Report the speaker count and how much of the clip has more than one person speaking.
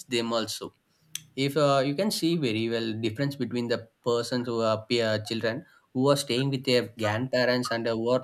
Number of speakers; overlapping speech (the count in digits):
1, no overlap